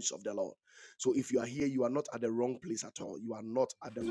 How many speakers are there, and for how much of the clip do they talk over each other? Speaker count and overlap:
1, no overlap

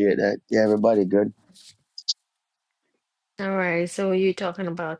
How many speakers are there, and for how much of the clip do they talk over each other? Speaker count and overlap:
2, no overlap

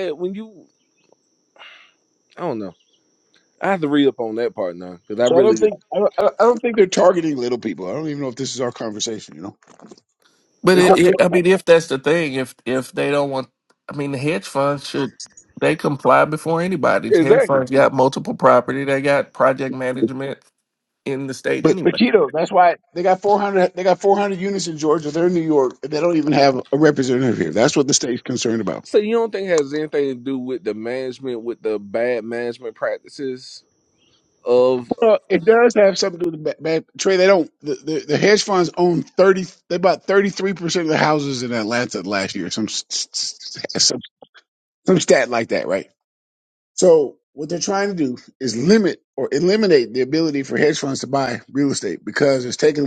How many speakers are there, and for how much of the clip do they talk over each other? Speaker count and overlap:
3, about 3%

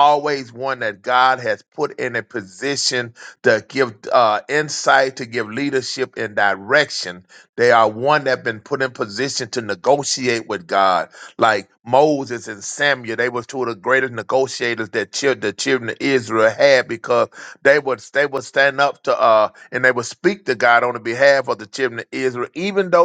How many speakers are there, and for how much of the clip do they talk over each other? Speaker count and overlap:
1, no overlap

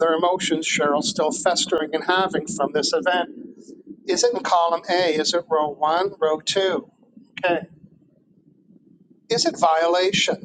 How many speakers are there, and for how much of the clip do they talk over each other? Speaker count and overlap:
1, no overlap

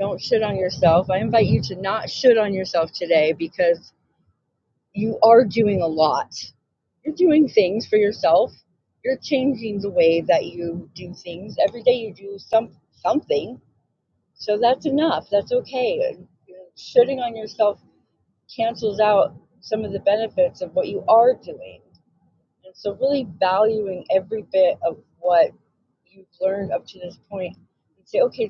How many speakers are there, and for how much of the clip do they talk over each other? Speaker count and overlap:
1, no overlap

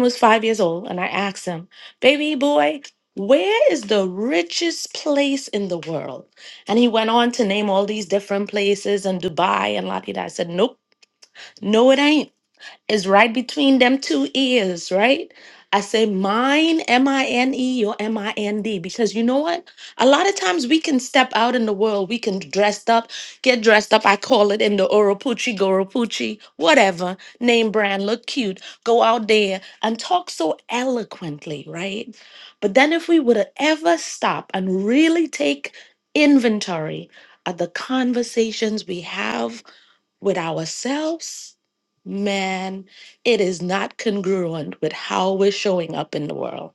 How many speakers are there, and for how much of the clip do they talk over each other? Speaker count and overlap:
1, no overlap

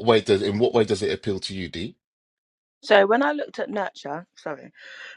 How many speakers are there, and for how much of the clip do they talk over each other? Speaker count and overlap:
2, no overlap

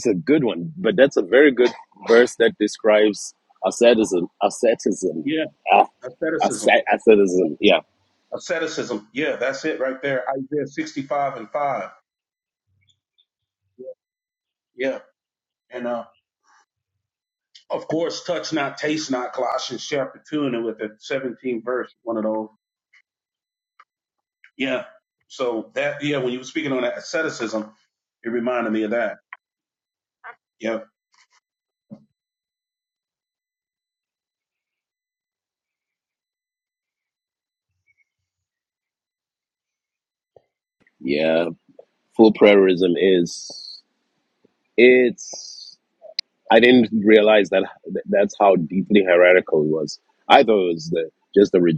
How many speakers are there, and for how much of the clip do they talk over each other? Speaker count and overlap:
2, no overlap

